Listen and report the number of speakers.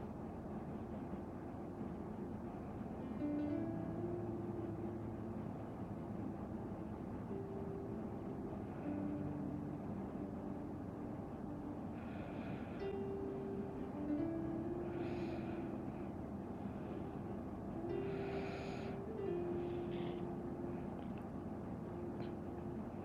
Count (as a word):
zero